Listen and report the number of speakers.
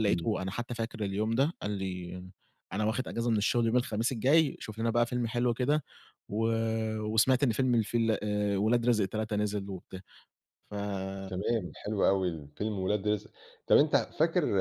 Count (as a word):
two